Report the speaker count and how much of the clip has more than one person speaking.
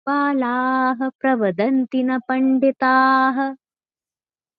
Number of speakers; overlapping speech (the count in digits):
1, no overlap